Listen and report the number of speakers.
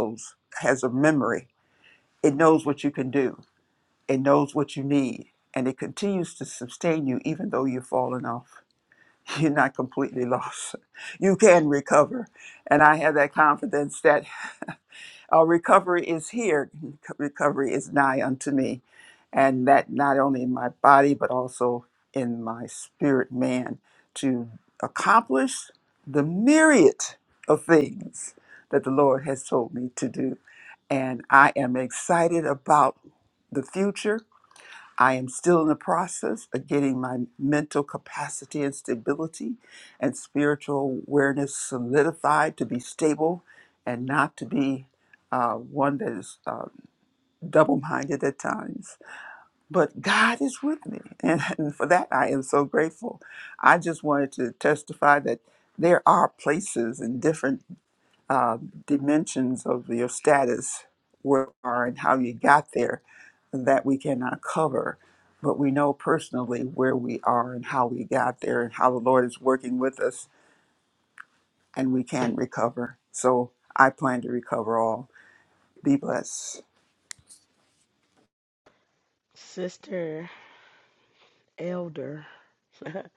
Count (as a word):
two